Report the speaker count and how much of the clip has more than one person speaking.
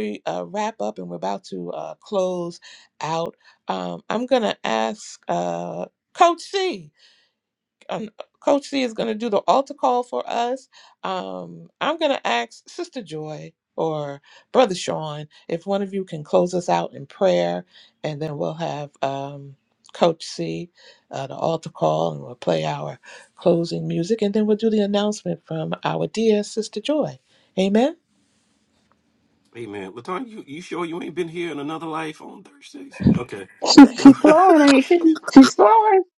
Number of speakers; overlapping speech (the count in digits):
3, about 1%